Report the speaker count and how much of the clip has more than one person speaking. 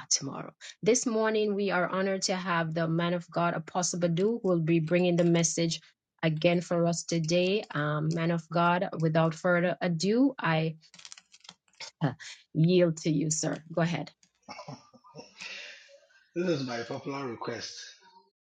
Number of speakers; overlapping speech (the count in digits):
2, no overlap